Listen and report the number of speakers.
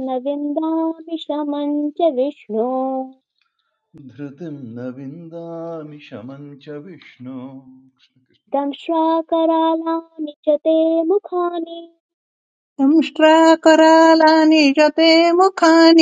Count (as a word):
three